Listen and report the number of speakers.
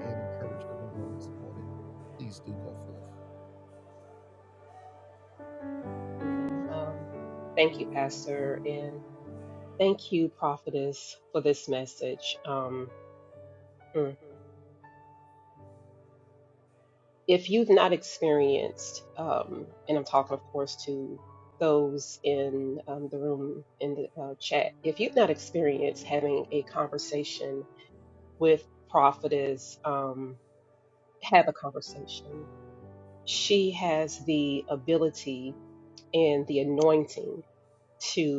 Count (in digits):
2